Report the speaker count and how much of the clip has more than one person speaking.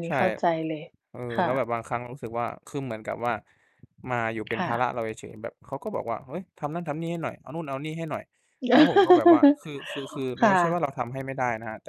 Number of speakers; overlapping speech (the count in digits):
2, about 9%